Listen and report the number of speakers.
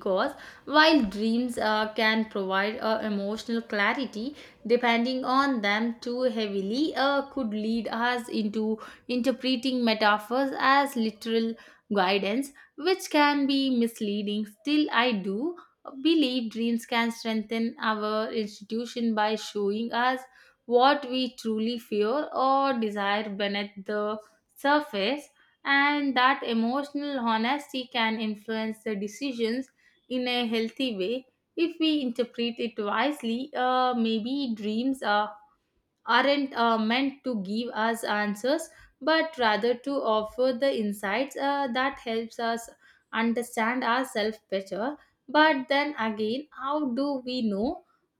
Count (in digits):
1